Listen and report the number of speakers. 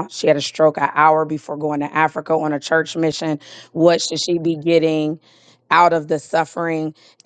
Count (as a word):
one